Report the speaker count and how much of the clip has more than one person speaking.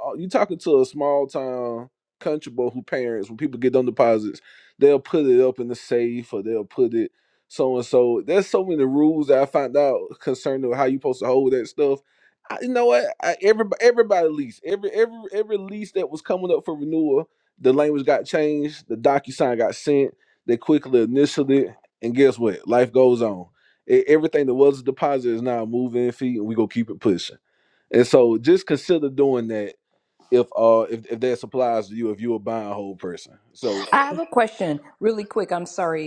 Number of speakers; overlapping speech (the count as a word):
two, no overlap